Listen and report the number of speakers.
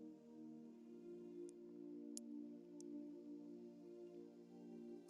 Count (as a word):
zero